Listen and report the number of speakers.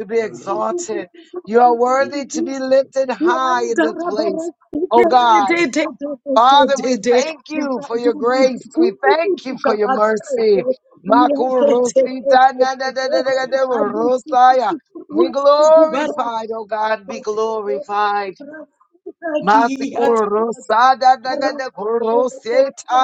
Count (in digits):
2